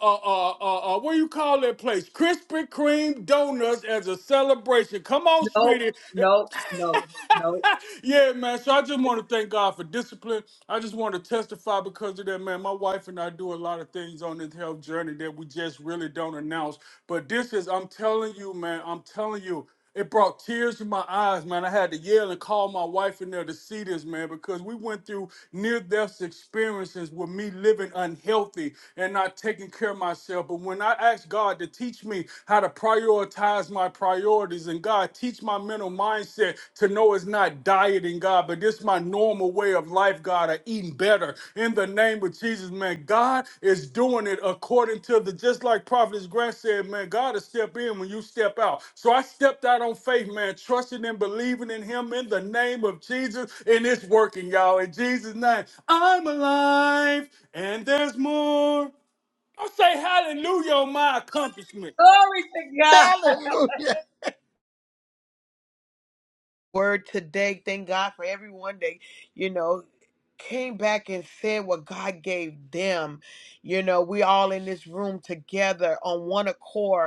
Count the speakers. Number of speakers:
three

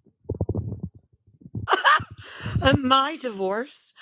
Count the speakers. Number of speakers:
one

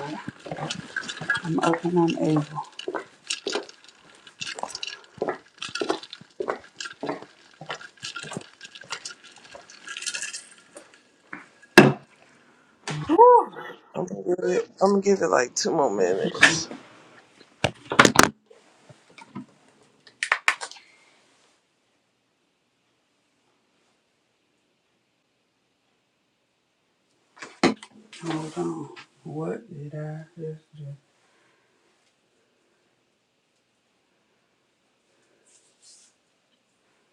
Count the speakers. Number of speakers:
two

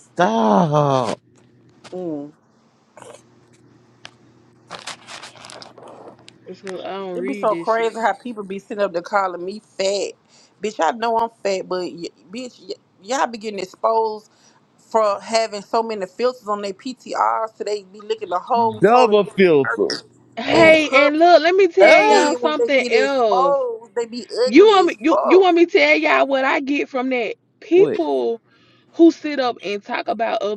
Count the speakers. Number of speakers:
three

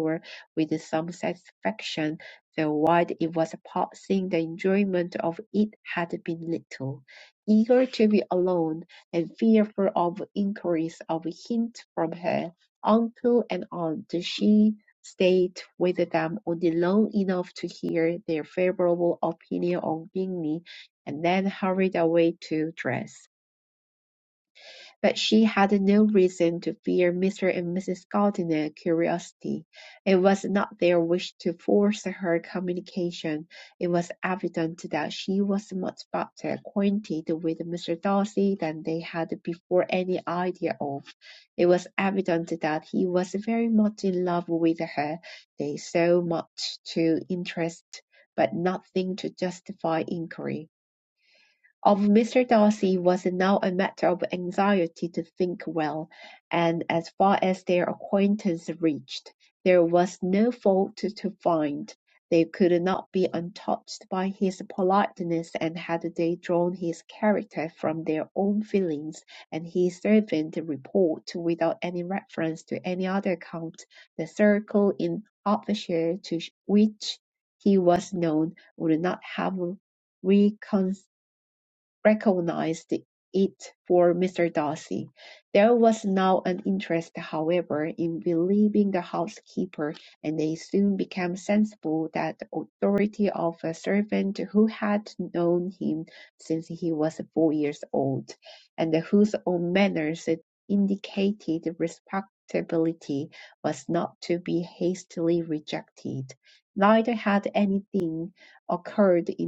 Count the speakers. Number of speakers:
one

